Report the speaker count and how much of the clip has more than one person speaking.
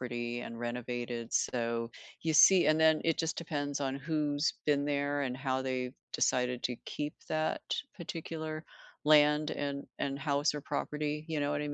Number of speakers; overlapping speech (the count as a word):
one, no overlap